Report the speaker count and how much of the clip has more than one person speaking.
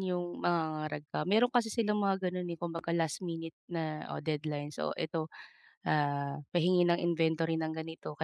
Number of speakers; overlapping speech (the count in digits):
1, no overlap